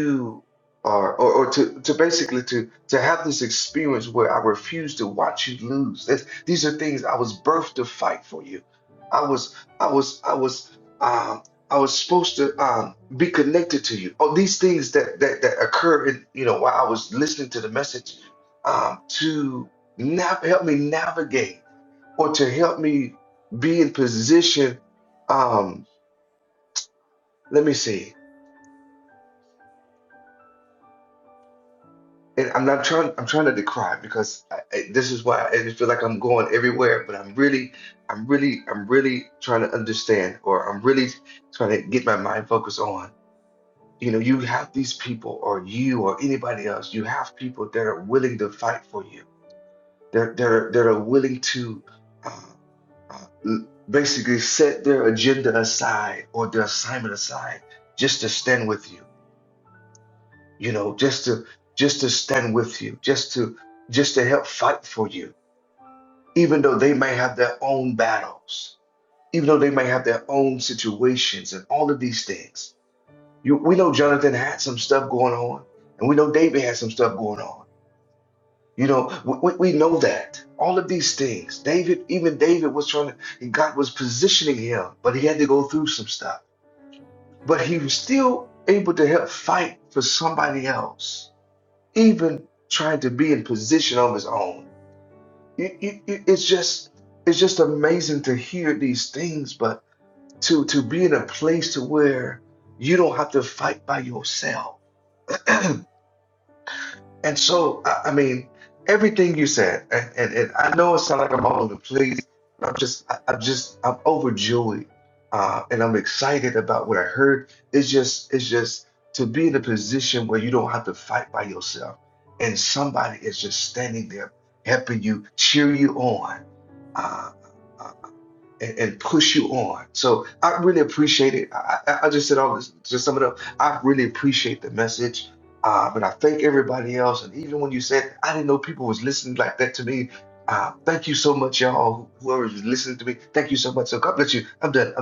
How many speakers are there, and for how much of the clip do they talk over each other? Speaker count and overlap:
1, no overlap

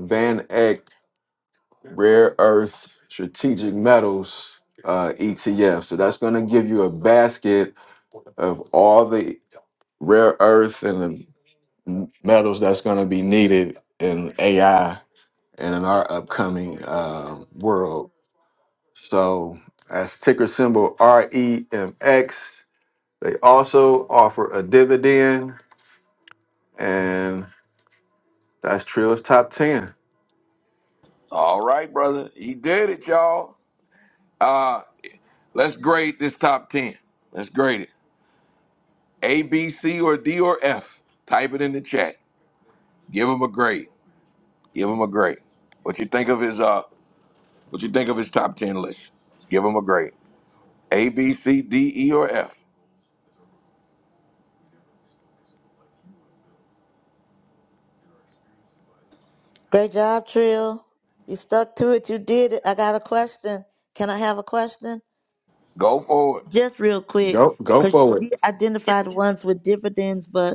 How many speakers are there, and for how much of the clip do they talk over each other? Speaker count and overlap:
3, about 1%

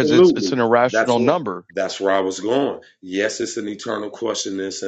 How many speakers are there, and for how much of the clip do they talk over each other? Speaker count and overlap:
2, about 22%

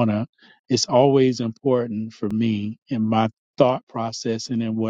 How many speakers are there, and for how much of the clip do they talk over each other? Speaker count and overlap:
1, no overlap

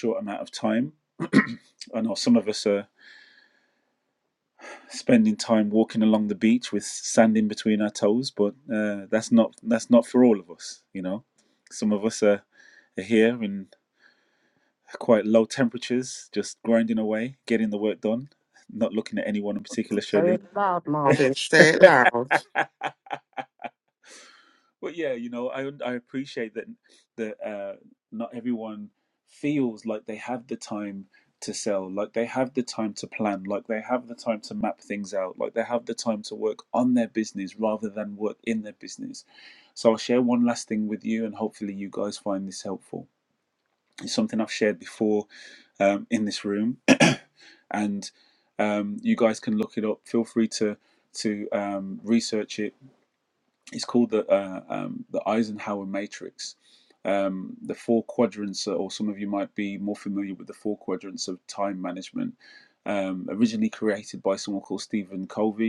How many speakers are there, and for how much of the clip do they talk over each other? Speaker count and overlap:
2, under 1%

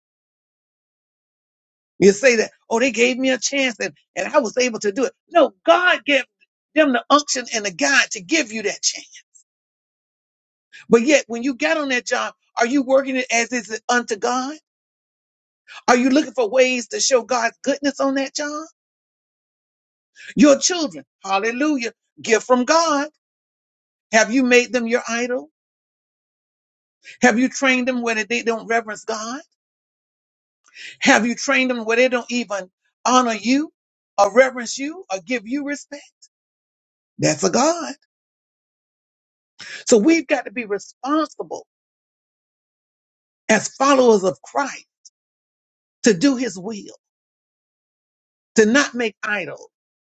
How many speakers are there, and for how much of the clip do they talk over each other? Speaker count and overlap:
1, no overlap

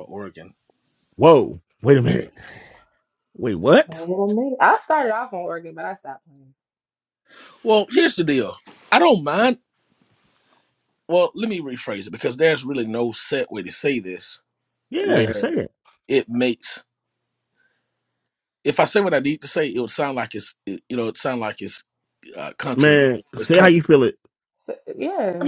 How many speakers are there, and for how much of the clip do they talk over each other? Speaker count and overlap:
3, about 5%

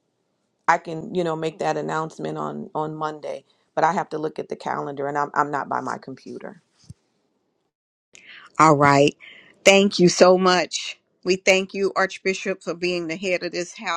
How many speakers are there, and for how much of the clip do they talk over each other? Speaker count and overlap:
2, no overlap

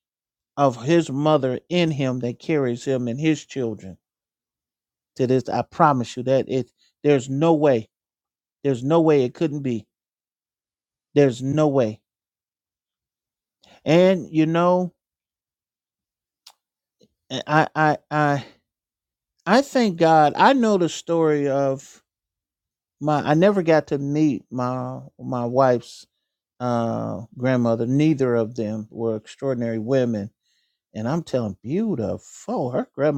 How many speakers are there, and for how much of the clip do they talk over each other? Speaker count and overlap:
1, no overlap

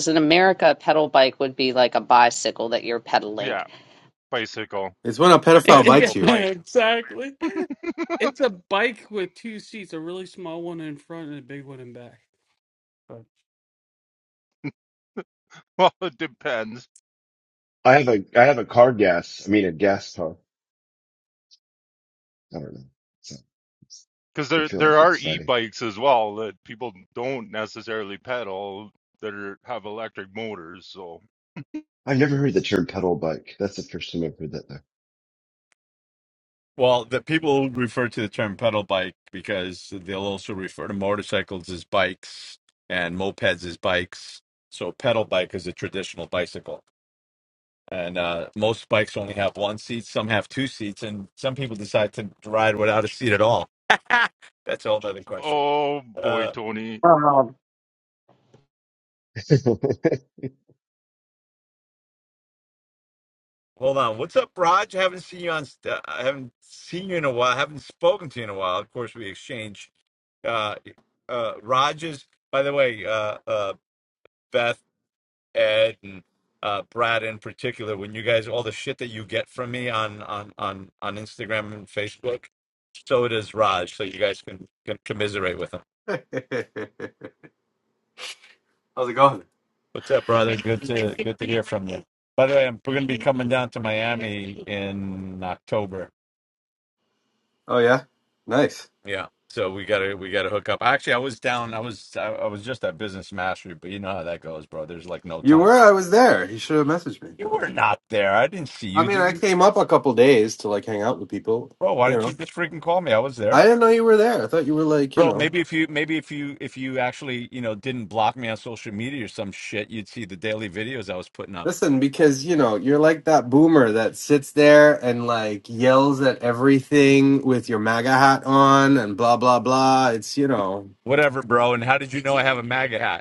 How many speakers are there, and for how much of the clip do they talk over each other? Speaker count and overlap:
6, about 3%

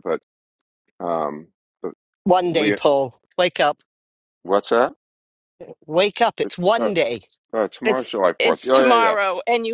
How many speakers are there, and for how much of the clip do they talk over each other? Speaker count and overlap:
3, about 18%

